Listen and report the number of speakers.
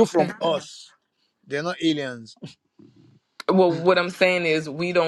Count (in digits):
2